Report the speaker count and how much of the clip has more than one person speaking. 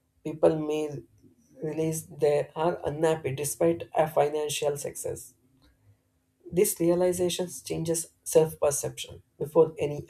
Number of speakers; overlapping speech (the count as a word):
one, no overlap